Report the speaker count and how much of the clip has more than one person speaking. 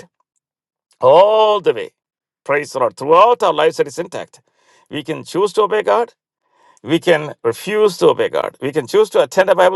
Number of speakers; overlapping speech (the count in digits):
1, no overlap